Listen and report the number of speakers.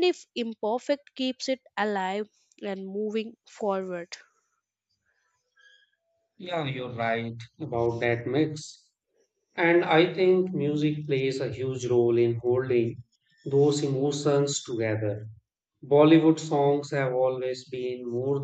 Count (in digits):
2